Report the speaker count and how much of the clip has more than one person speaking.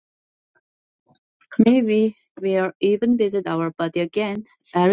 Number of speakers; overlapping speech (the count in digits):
1, no overlap